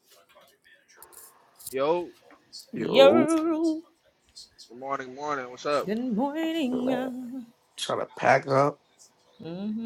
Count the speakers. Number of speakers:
3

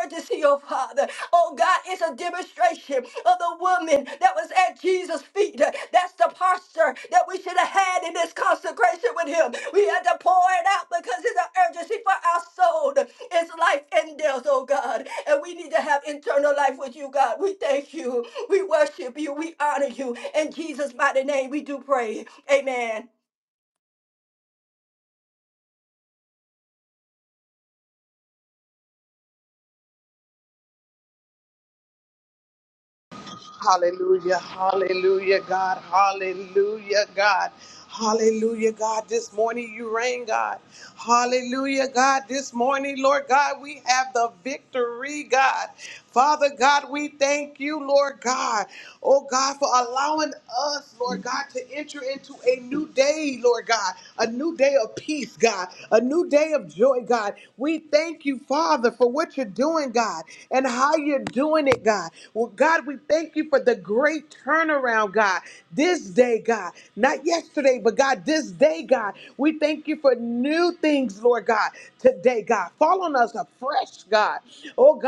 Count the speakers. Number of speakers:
2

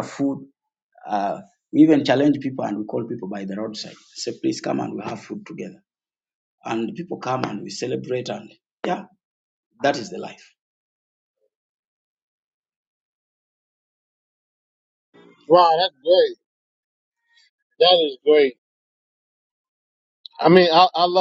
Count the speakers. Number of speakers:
2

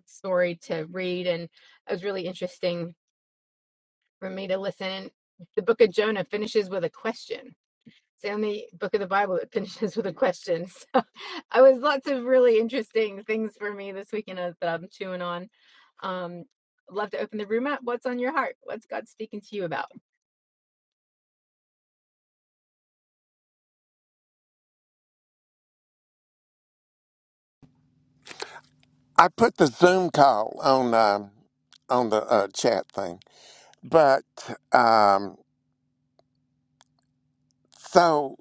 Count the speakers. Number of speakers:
2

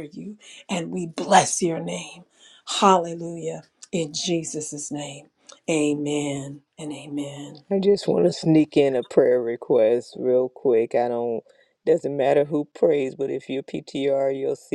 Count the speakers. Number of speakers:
2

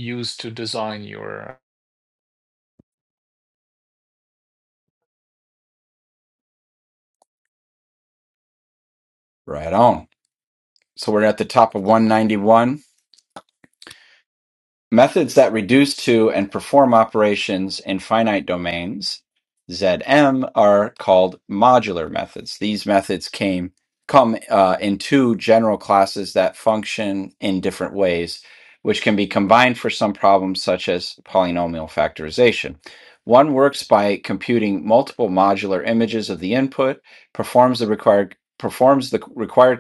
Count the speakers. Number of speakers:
2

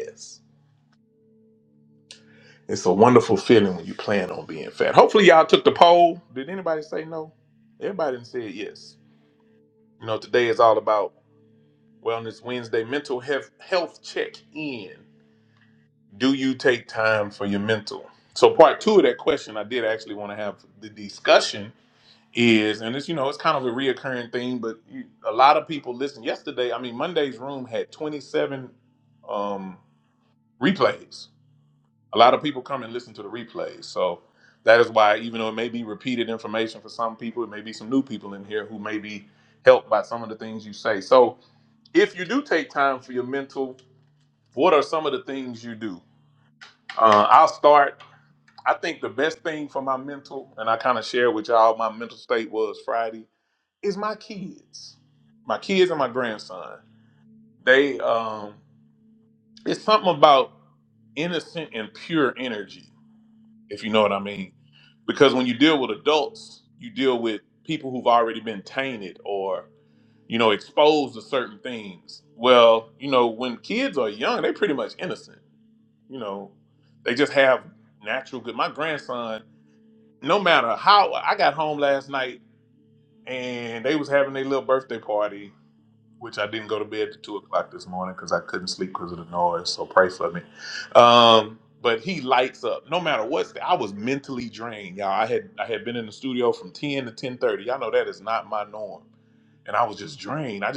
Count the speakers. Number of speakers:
1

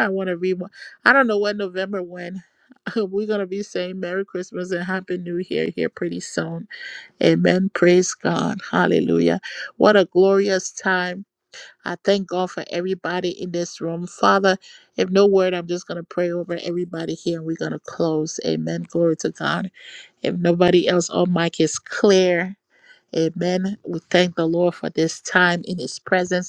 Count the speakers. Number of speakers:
1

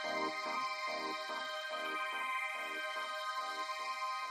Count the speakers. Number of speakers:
0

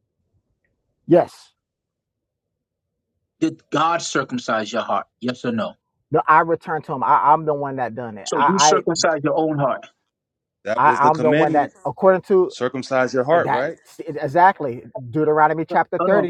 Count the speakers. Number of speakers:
3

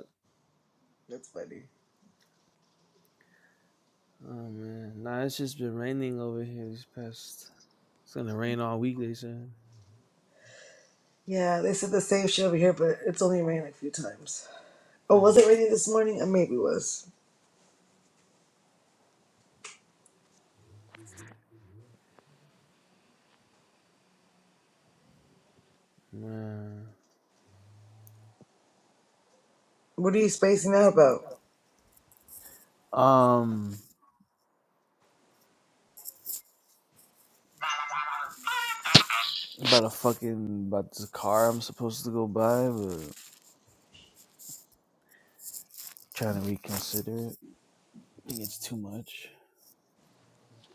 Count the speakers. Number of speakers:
2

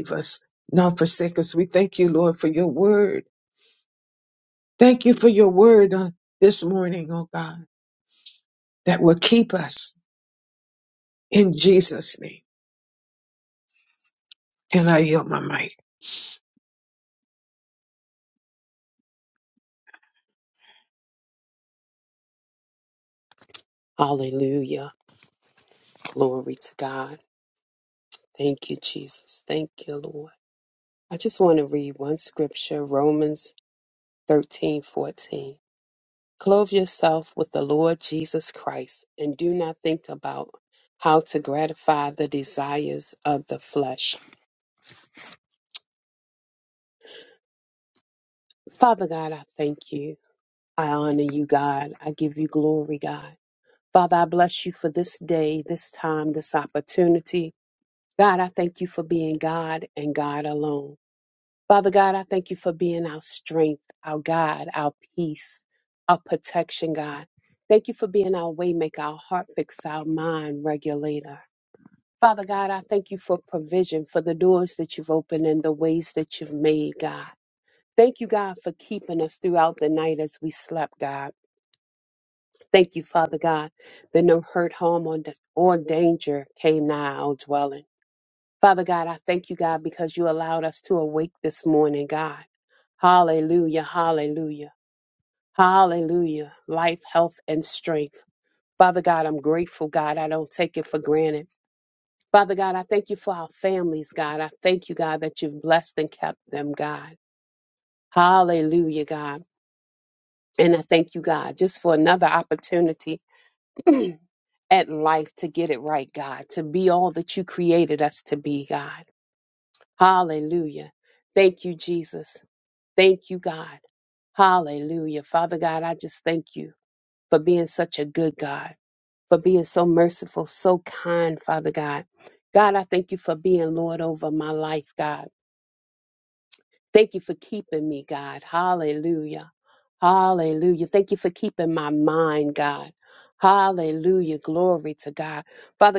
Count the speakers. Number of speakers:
2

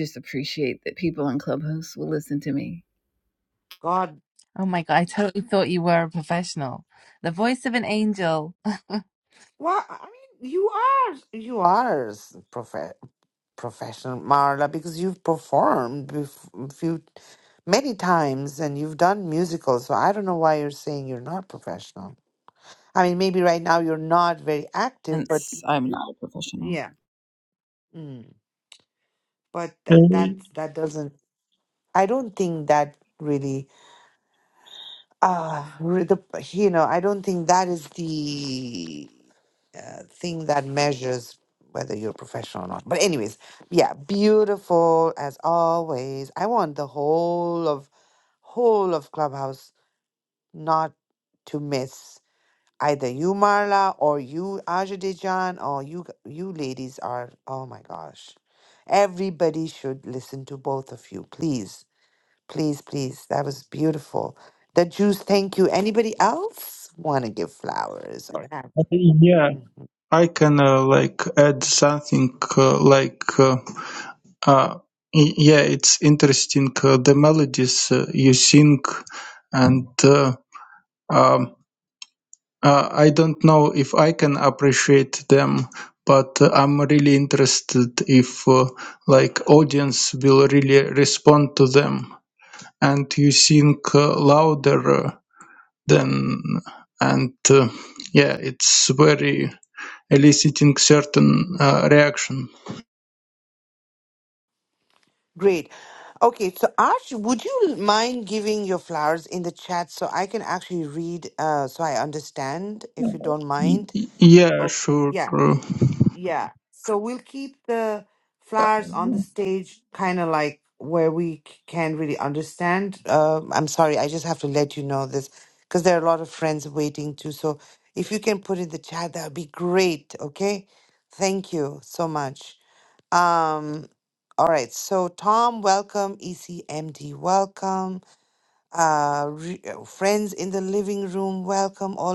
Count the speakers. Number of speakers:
4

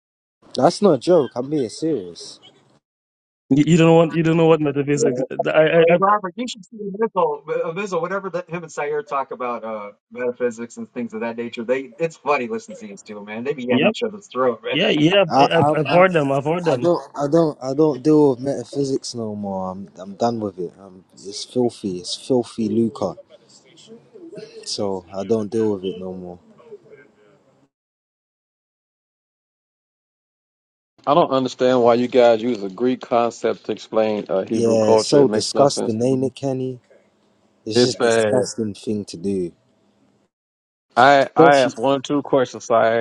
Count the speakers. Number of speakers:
4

